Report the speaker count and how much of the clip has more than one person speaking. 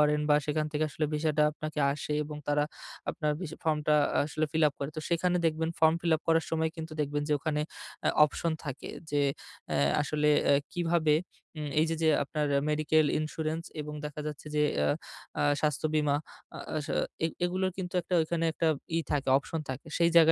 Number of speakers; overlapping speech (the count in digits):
1, no overlap